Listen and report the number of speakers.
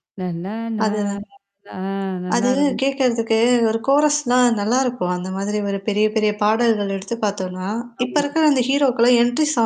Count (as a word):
two